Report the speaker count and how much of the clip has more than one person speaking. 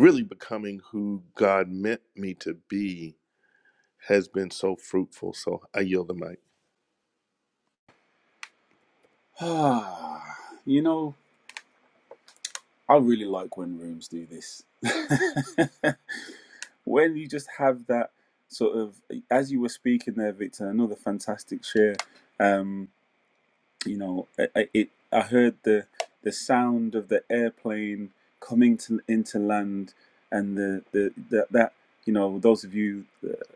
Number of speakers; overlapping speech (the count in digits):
2, no overlap